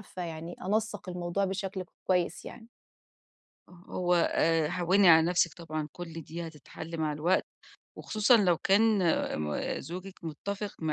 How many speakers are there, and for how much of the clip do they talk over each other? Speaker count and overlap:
2, no overlap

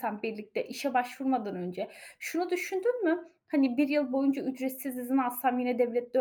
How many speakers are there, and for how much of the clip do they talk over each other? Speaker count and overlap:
1, no overlap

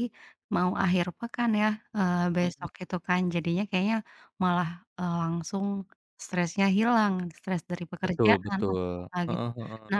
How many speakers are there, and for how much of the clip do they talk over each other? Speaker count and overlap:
2, about 9%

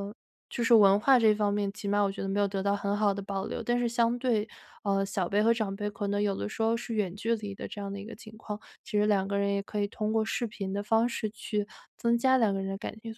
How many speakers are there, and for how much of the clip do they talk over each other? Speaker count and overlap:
1, no overlap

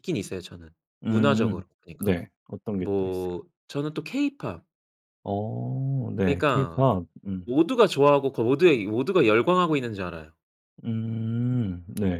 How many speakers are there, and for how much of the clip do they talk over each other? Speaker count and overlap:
2, about 12%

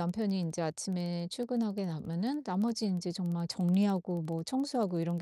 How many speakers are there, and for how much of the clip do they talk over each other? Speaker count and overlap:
1, no overlap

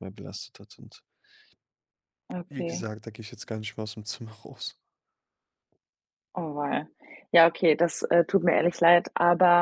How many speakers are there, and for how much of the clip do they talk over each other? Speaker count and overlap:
2, about 3%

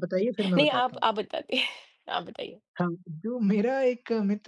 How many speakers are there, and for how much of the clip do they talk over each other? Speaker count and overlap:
2, about 10%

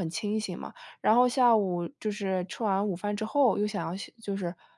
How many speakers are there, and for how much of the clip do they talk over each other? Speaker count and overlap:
1, no overlap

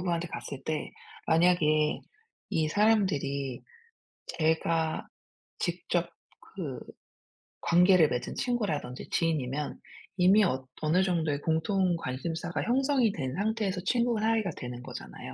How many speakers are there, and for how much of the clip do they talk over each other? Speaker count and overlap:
1, no overlap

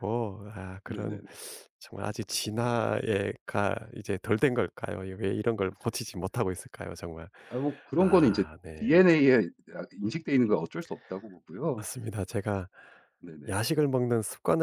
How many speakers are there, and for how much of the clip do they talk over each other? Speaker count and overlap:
2, about 8%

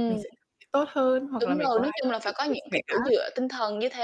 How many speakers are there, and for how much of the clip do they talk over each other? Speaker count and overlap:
2, about 48%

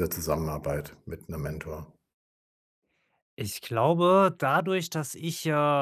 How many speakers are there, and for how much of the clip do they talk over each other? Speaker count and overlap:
2, no overlap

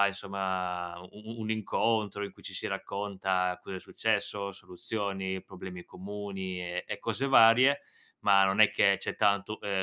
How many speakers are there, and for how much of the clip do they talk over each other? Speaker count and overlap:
1, no overlap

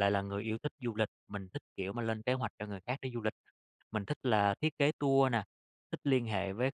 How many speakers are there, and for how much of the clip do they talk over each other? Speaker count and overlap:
1, no overlap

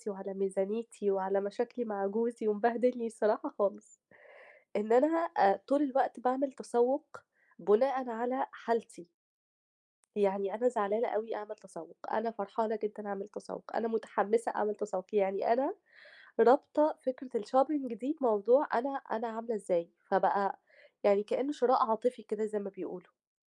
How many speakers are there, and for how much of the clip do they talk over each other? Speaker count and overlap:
1, no overlap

